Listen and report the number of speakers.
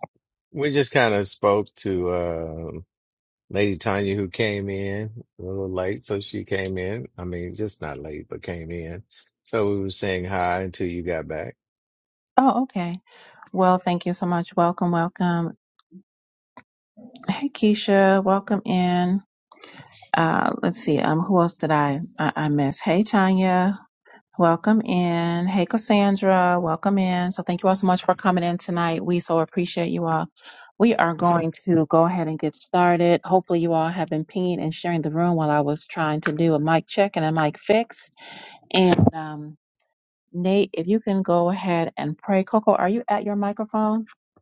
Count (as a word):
two